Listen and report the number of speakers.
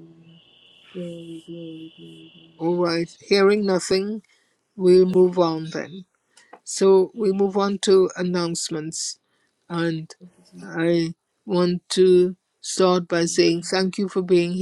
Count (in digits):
2